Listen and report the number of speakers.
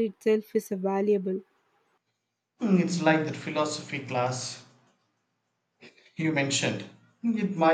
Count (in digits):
2